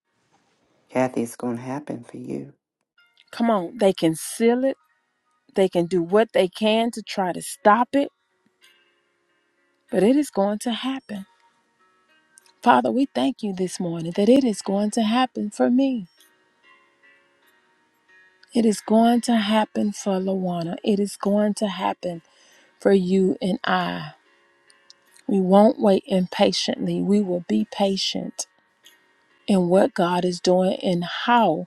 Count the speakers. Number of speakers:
2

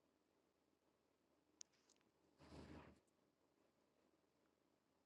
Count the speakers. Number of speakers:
0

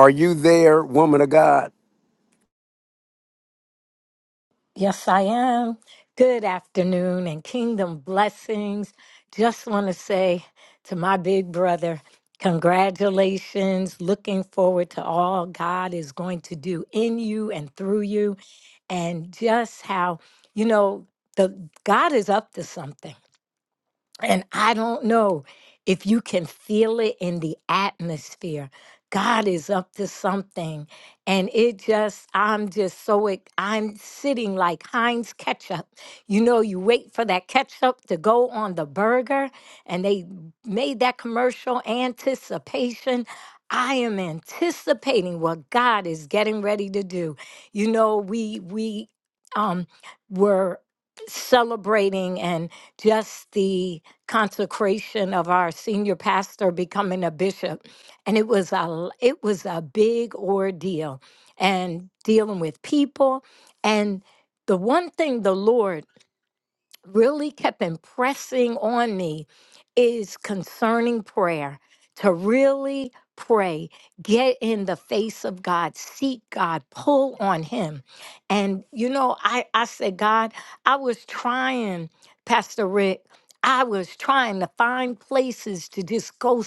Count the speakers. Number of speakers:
2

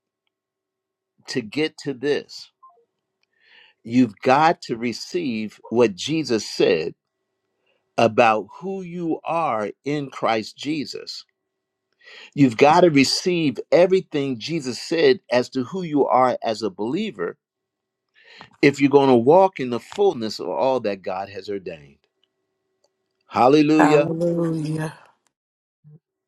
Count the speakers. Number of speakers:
2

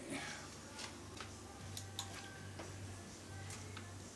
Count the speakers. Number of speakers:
0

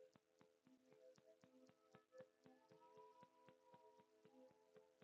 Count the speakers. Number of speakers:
0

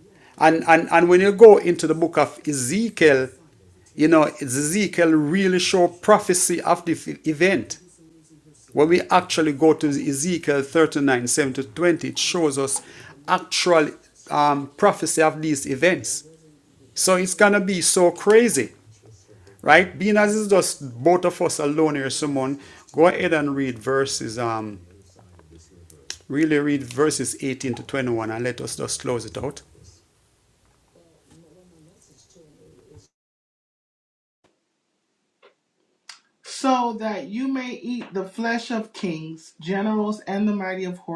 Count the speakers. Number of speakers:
2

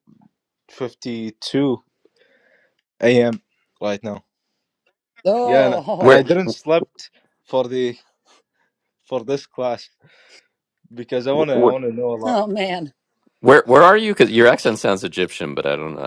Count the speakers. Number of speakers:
3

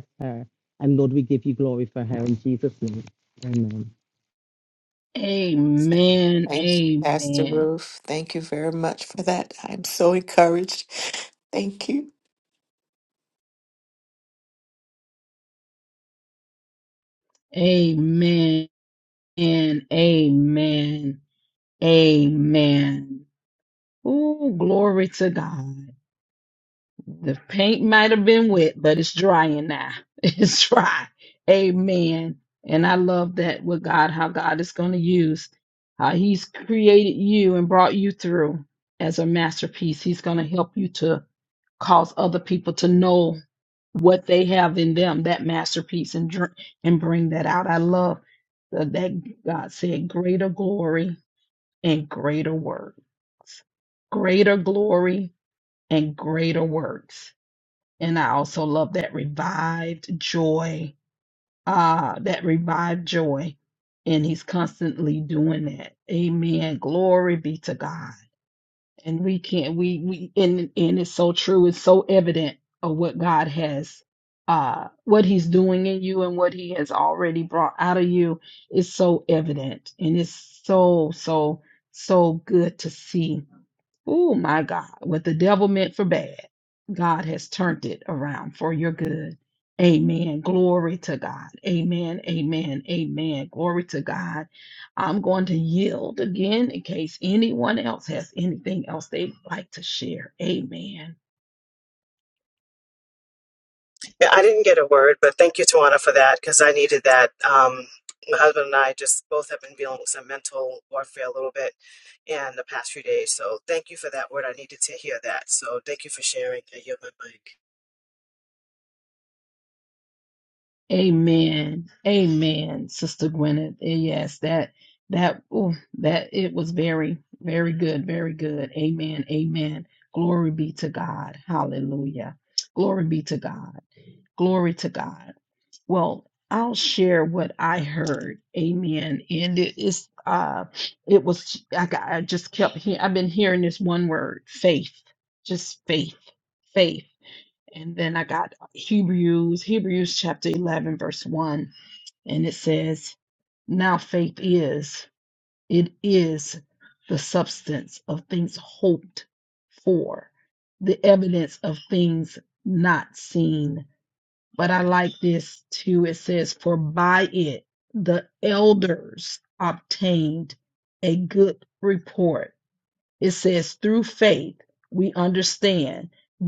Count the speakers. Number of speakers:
4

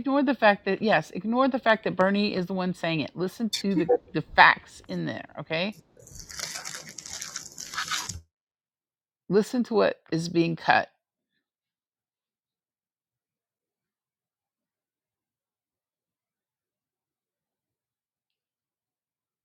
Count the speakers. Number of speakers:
1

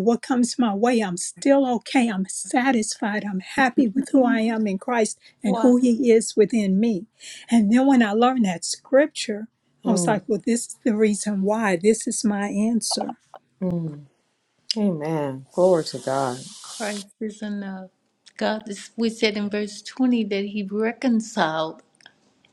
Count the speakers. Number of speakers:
3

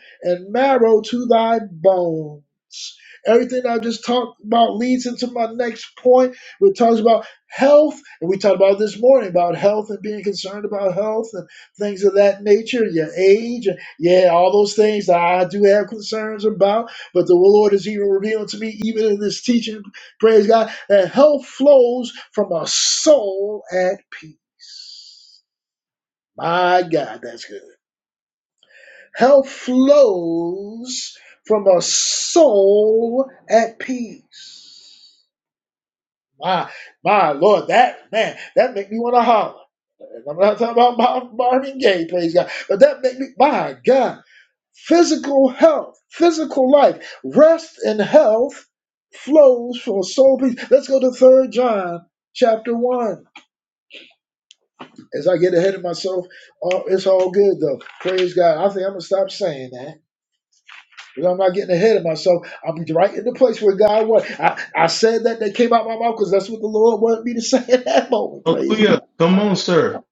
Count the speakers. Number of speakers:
2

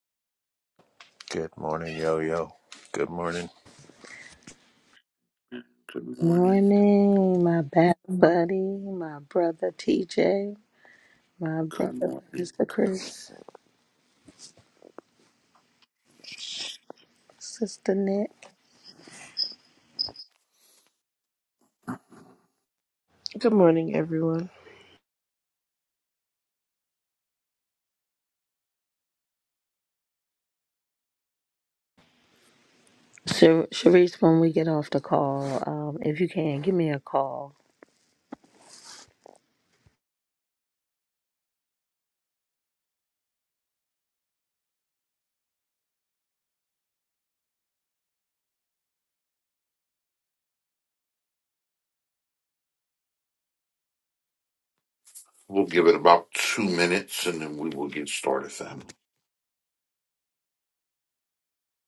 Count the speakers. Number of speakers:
4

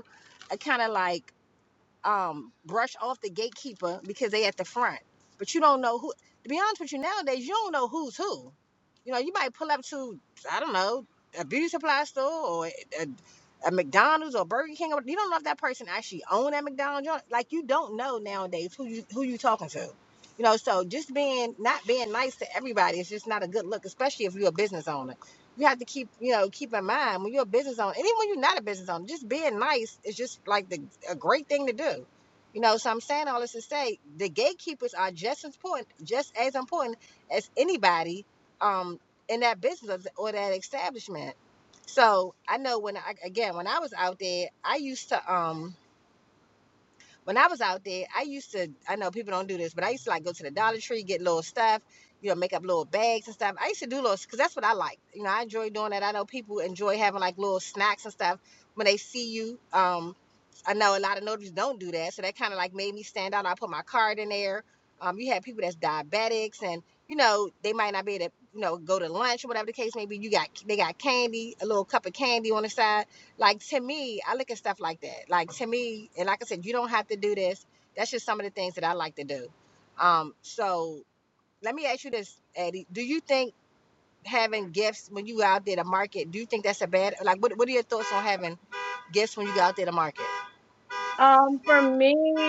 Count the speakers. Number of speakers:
2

